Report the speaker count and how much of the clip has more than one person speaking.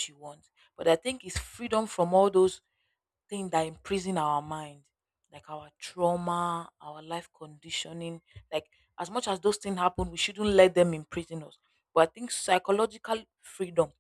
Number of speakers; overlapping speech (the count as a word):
one, no overlap